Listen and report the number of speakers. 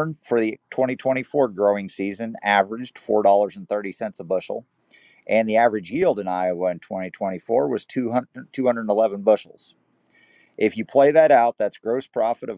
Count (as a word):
one